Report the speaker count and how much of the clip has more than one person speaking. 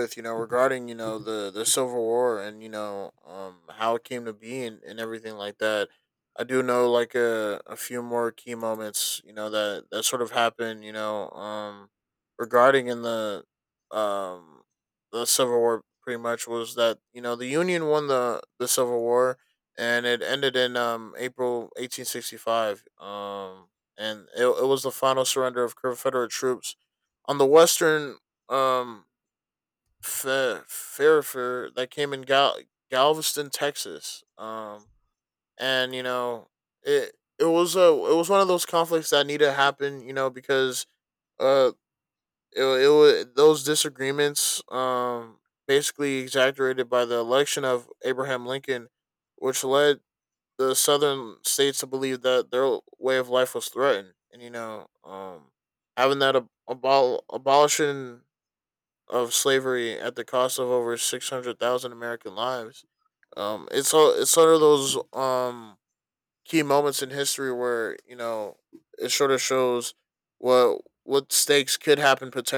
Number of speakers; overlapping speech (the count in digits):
1, no overlap